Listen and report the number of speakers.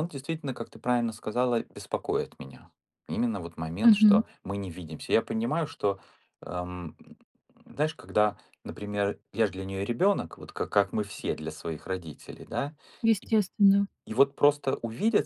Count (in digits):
2